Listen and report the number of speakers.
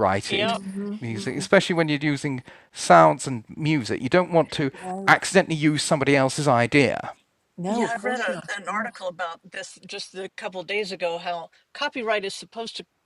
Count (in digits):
3